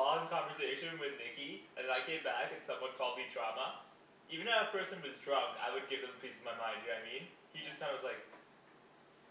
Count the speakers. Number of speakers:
one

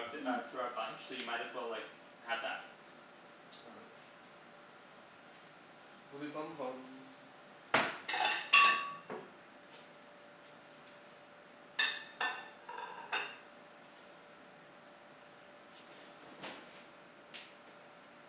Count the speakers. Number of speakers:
two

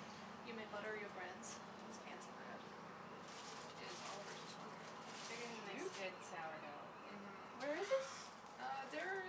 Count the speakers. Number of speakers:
three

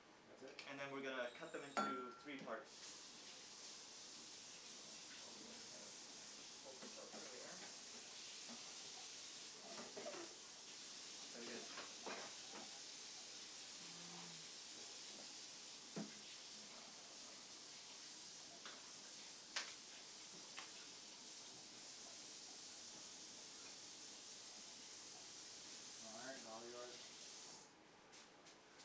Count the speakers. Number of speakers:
two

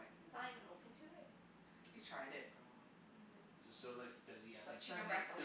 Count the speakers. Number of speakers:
three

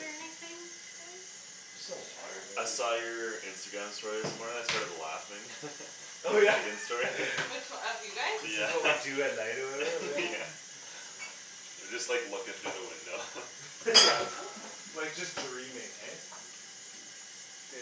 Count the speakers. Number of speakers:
four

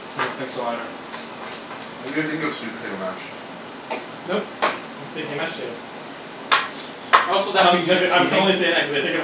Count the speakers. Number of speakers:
three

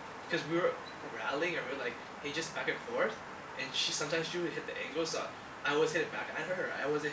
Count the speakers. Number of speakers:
one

